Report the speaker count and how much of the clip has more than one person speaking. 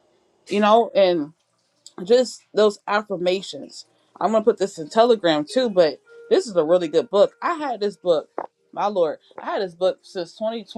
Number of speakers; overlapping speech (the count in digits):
1, no overlap